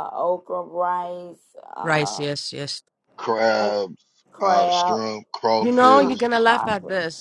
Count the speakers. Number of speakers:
3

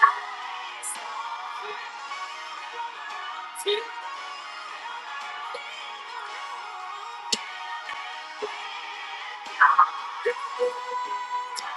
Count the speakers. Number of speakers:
0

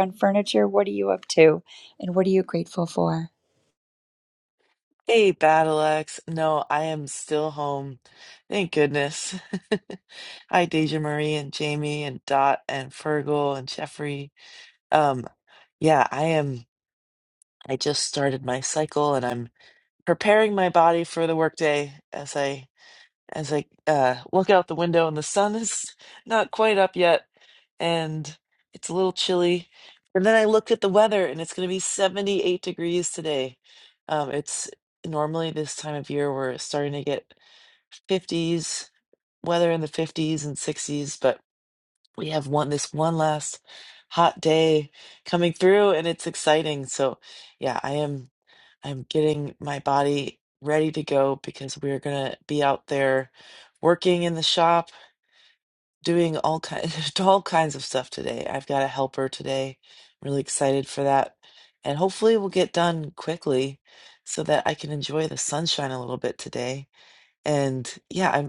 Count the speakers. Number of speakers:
2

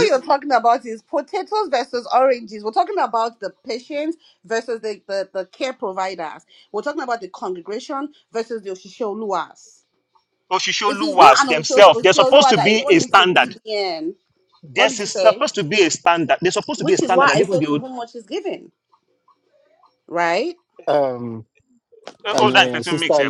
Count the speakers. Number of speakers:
3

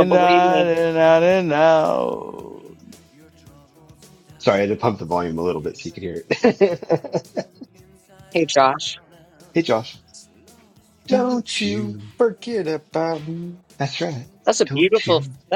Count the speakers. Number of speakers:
4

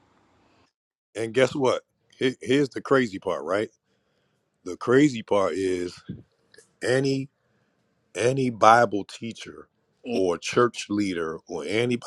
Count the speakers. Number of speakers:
1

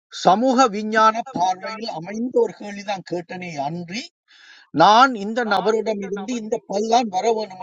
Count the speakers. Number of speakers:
1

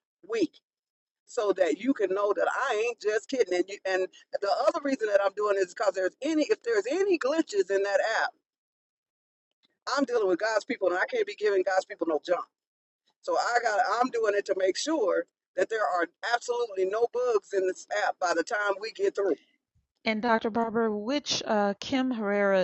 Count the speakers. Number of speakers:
2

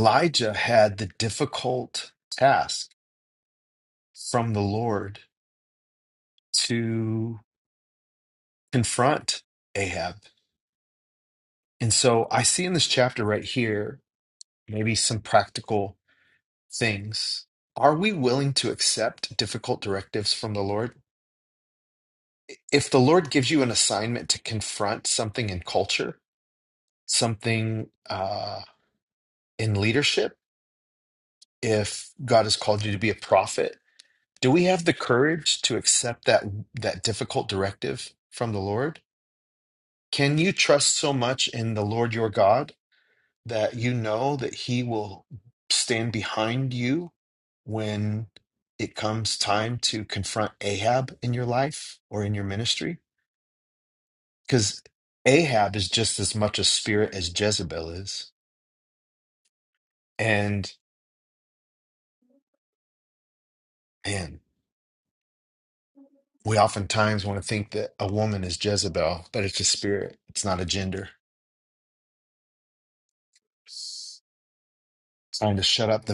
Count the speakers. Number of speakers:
1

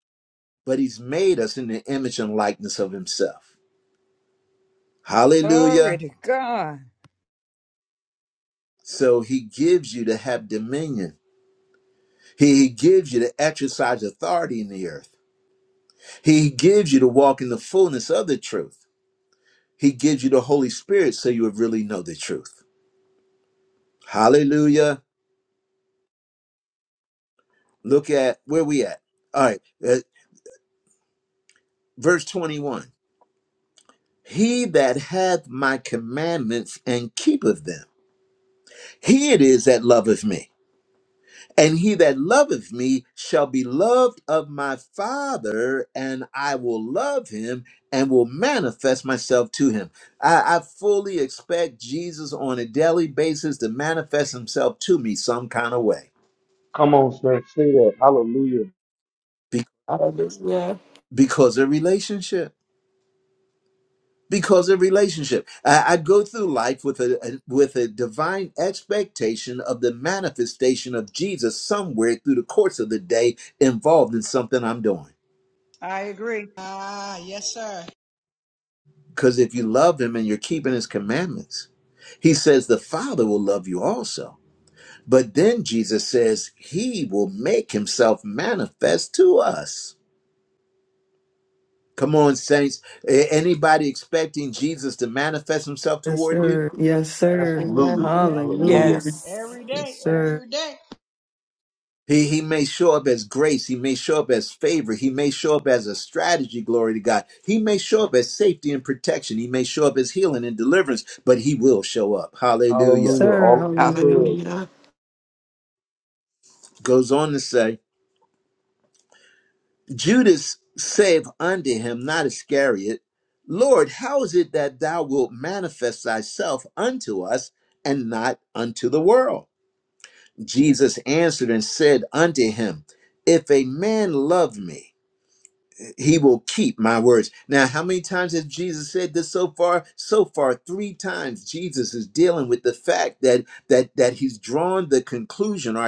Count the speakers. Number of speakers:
6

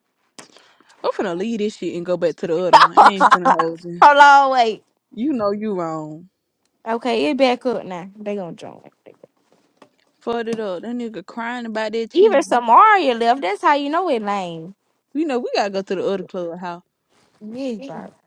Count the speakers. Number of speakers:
2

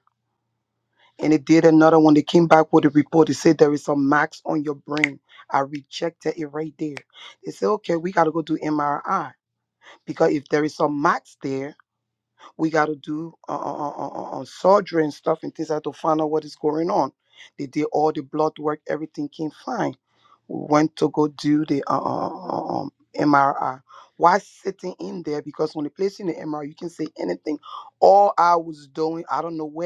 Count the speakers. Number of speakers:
1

